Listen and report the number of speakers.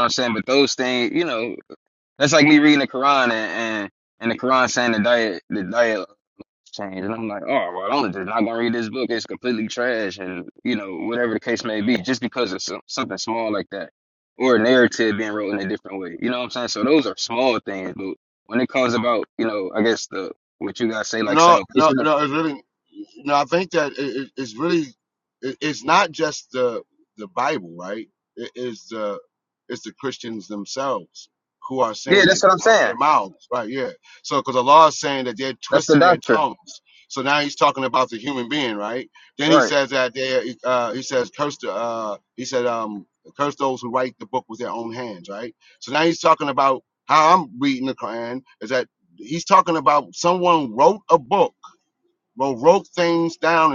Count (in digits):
2